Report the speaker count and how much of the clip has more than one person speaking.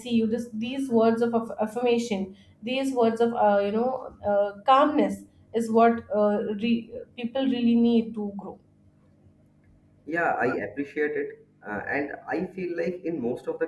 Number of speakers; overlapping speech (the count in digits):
2, no overlap